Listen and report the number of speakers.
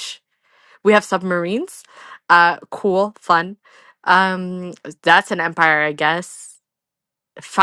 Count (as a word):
one